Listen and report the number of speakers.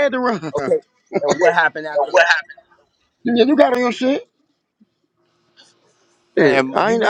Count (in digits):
2